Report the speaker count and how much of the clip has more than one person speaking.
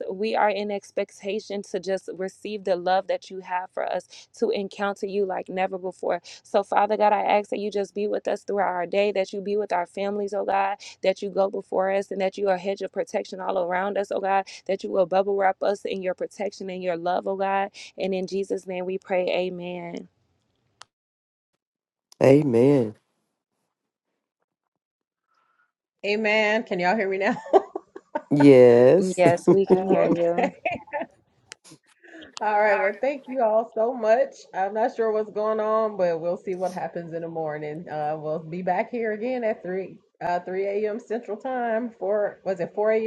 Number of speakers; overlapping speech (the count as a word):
three, about 3%